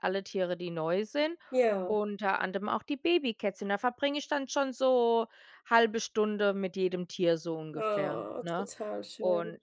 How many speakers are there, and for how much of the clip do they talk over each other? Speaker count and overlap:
2, about 15%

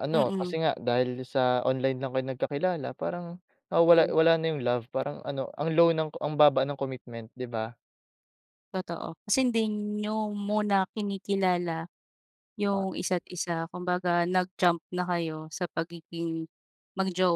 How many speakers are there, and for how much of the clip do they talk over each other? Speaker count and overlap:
2, about 5%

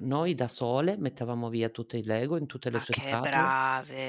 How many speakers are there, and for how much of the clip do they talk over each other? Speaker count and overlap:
2, about 19%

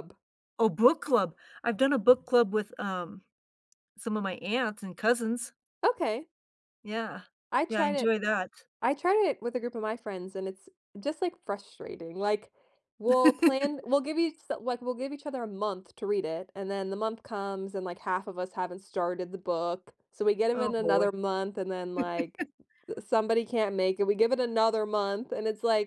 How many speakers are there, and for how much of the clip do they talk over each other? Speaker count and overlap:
2, about 4%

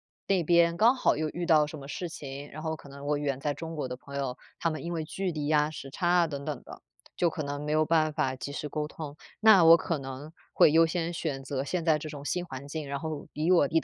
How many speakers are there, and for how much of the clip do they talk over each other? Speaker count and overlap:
1, no overlap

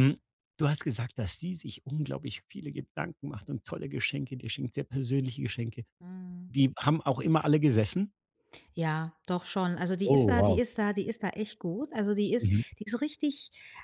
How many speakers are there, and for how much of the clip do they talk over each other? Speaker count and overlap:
2, about 6%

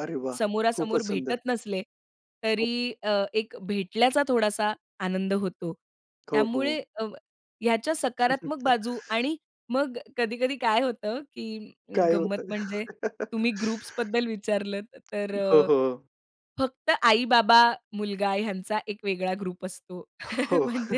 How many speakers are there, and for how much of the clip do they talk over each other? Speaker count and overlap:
2, about 7%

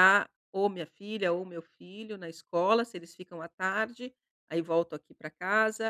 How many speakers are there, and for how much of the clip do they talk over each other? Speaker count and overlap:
1, no overlap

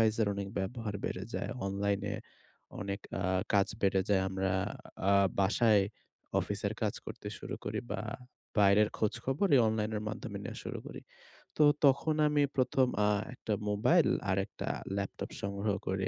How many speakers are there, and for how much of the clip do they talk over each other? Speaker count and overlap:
1, no overlap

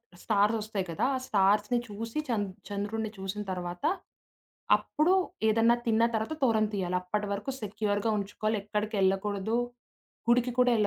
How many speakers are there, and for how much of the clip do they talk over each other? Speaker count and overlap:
1, no overlap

